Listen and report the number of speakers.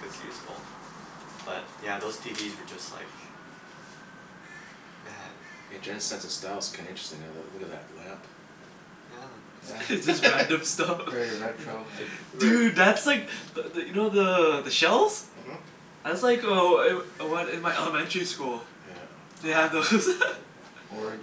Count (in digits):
4